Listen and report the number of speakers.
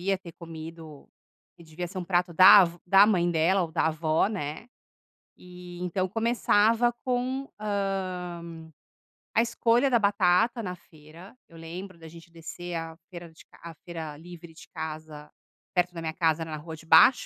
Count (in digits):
1